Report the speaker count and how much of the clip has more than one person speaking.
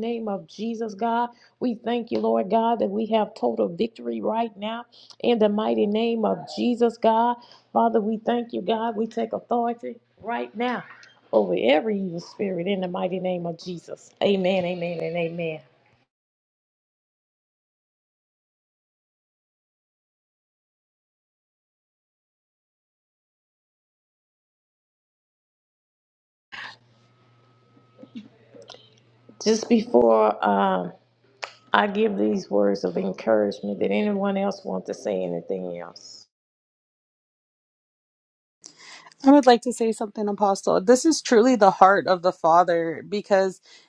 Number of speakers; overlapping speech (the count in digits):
2, no overlap